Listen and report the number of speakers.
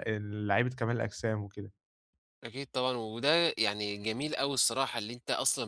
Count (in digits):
2